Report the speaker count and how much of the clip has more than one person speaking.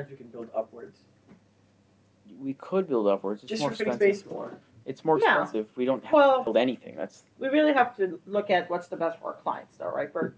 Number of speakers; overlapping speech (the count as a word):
three, about 14%